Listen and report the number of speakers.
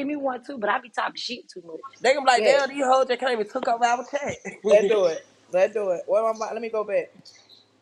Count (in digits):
3